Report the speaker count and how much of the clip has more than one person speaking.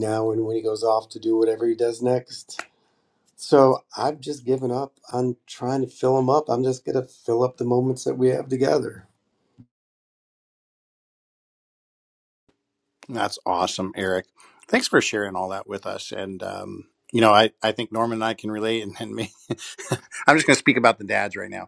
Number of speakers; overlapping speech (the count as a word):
two, no overlap